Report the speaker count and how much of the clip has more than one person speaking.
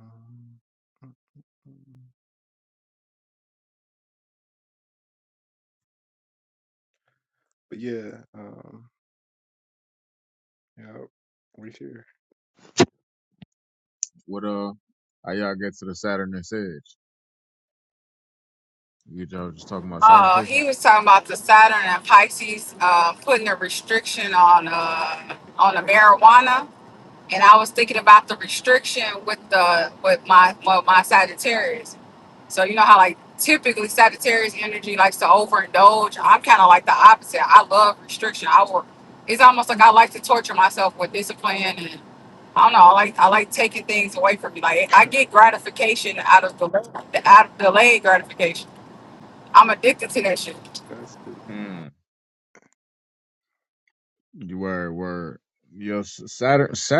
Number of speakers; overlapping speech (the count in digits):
3, about 1%